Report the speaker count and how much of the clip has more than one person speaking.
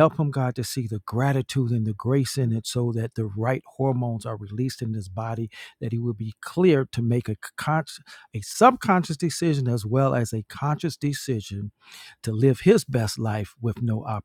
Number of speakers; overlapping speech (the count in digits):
1, no overlap